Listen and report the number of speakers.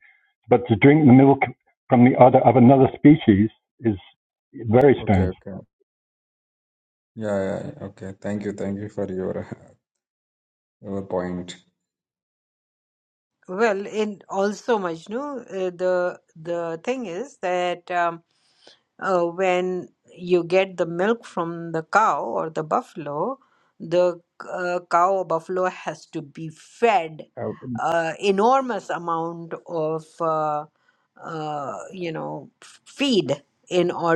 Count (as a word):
three